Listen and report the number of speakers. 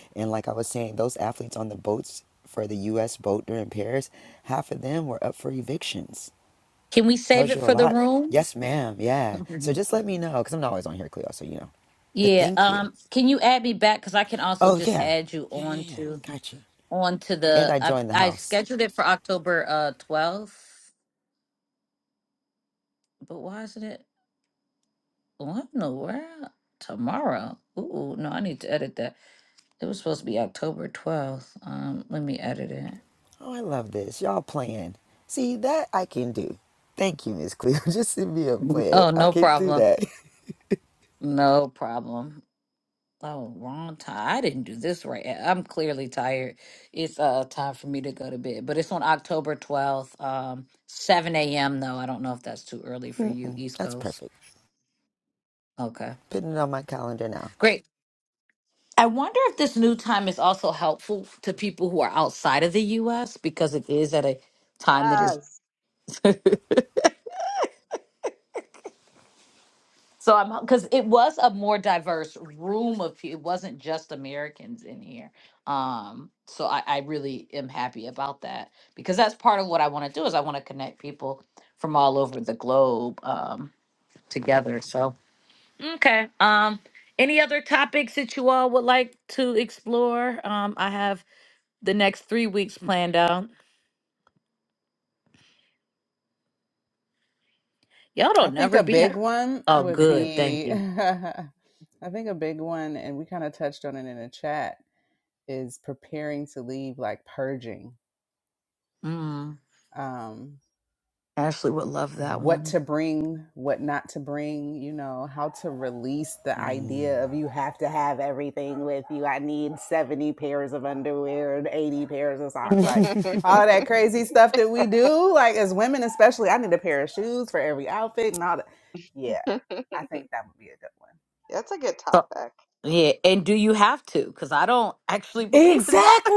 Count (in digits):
4